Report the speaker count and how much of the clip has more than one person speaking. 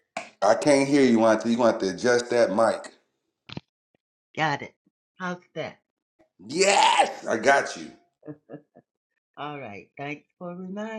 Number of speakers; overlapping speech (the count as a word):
two, no overlap